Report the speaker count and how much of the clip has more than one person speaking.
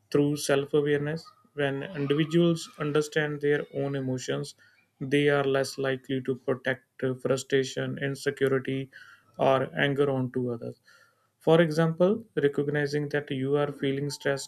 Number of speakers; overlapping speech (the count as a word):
one, no overlap